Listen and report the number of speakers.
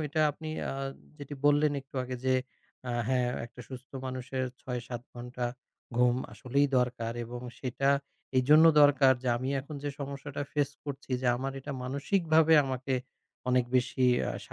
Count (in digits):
1